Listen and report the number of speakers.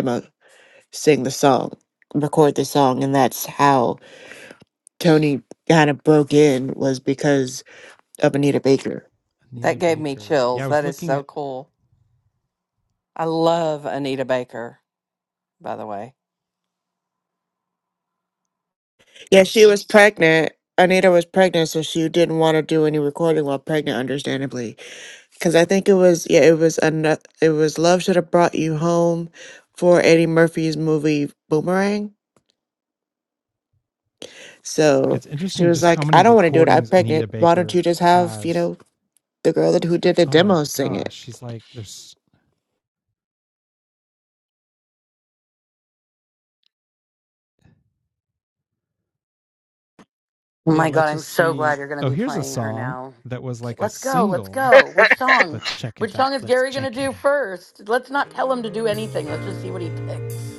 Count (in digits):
4